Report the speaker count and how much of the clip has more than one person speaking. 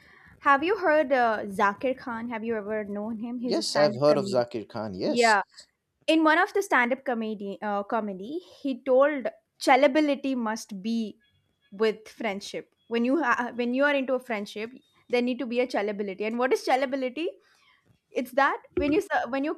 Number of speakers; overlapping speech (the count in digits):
2, about 6%